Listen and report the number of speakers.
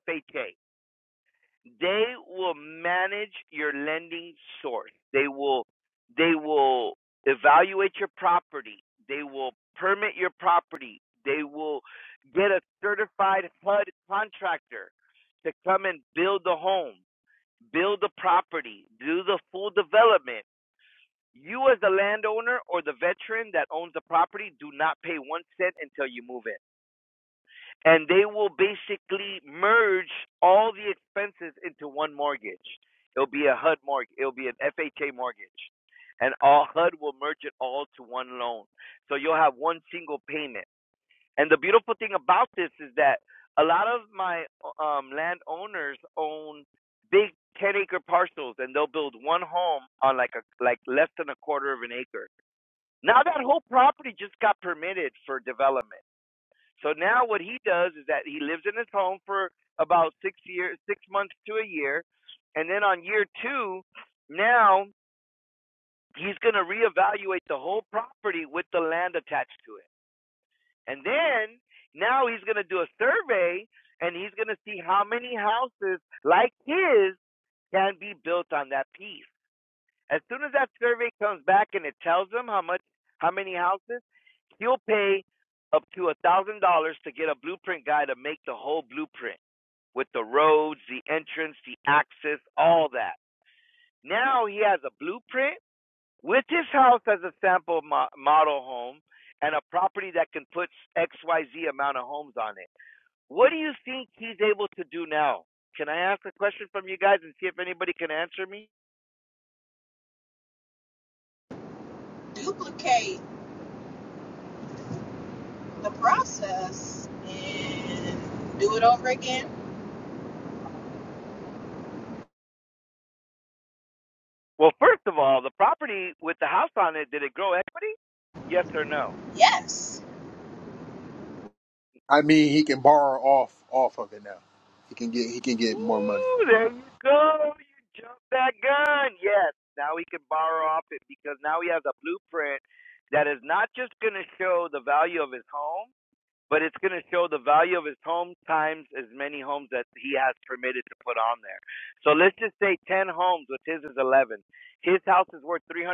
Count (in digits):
3